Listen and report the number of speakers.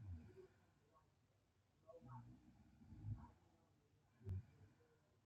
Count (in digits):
0